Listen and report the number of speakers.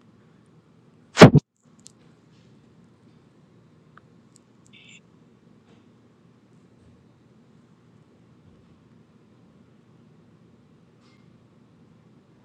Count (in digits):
0